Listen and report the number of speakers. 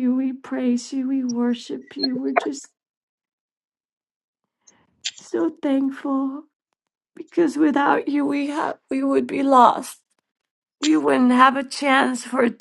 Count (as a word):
one